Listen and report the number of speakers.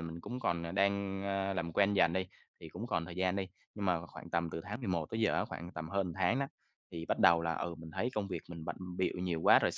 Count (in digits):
1